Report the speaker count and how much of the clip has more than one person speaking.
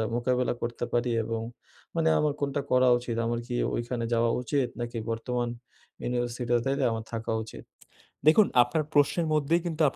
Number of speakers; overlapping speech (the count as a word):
two, no overlap